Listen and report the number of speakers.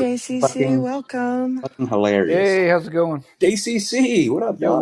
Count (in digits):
3